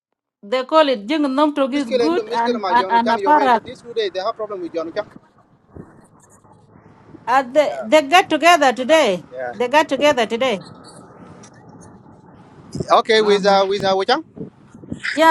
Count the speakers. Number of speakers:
2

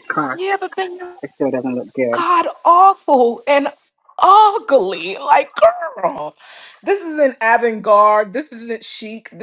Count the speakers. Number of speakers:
2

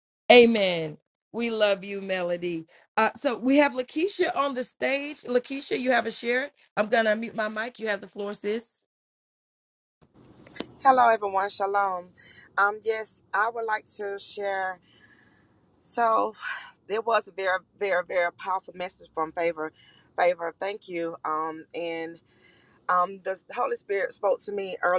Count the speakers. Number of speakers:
2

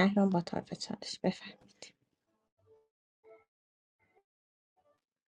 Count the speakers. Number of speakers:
1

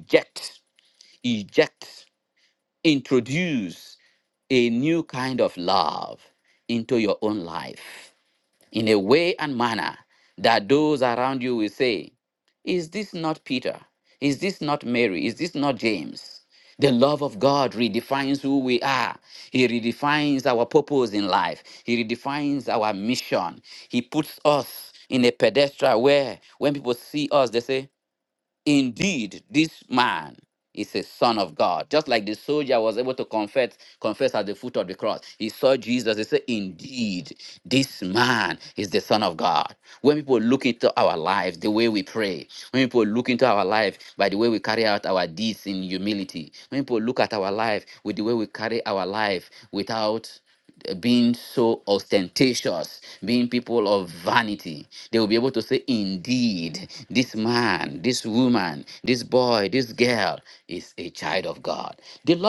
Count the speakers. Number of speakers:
1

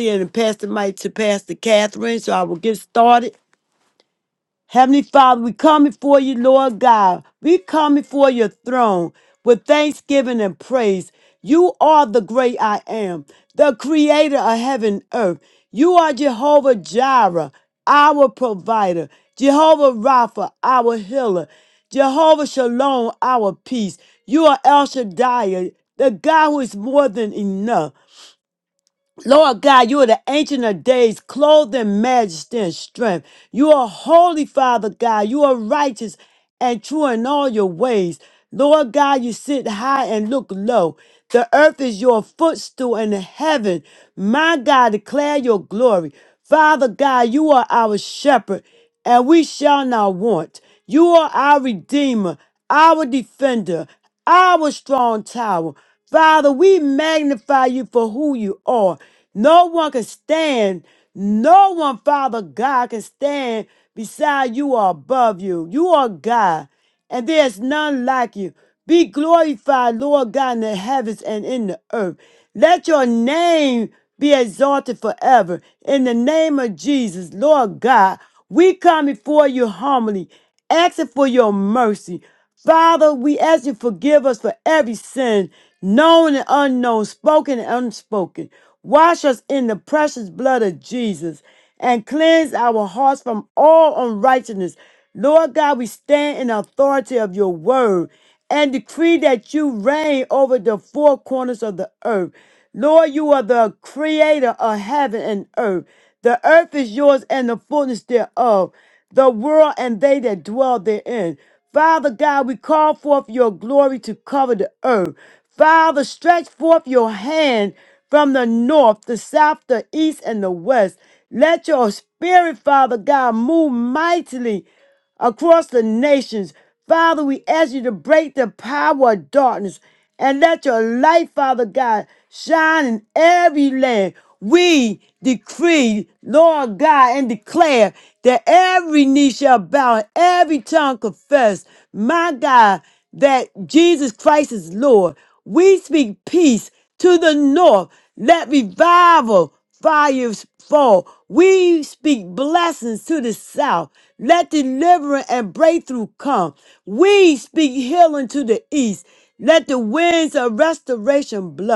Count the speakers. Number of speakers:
1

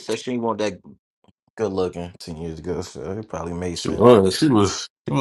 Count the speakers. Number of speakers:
2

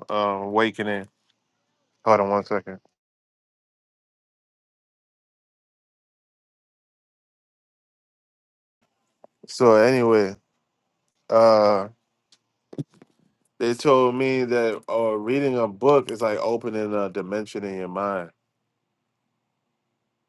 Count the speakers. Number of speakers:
1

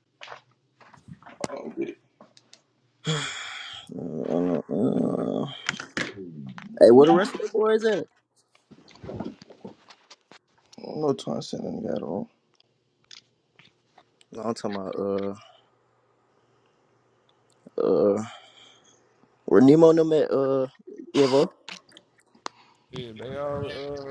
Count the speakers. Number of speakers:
3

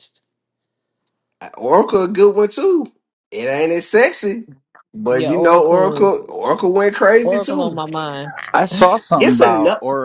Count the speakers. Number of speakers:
3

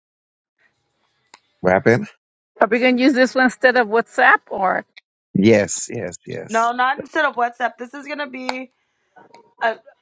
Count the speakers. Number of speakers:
3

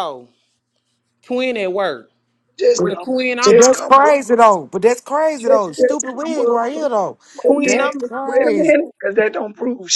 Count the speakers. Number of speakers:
3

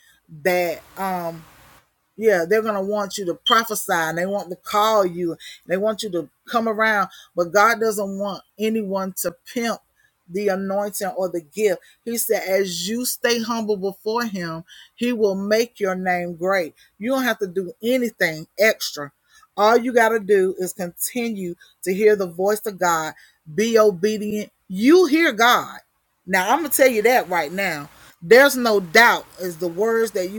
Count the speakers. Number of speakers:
1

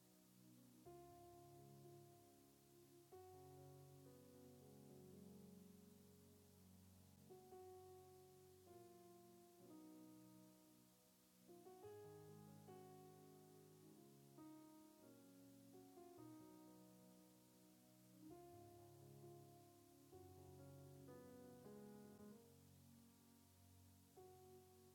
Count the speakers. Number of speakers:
0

